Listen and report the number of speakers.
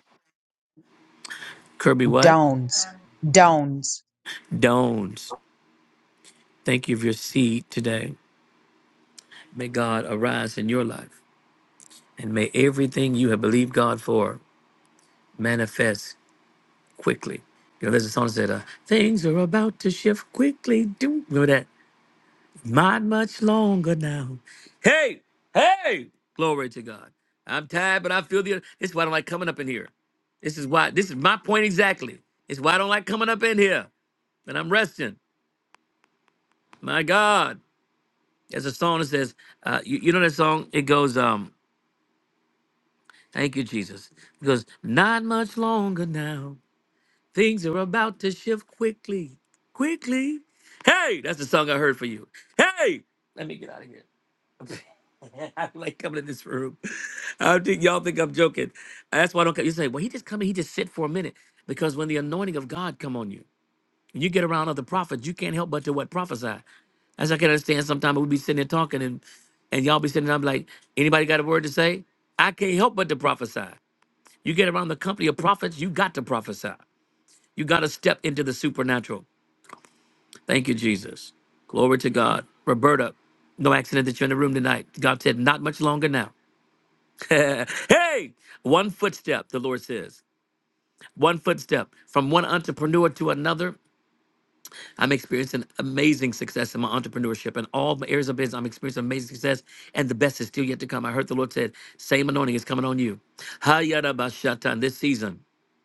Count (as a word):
two